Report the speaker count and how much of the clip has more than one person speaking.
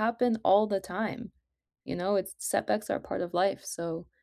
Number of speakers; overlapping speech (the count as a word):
one, no overlap